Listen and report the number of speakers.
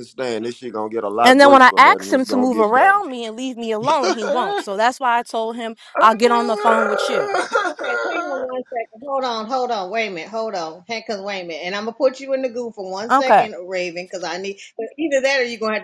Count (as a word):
three